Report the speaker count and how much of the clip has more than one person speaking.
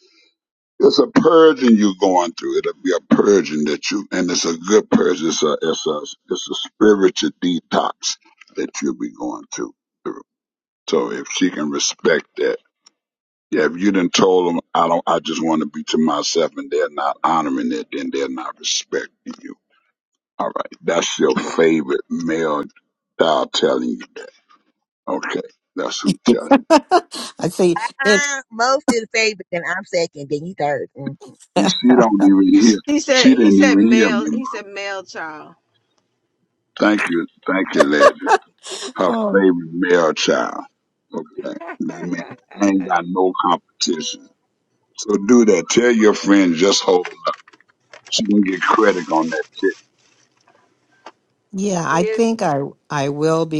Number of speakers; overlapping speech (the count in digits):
4, about 5%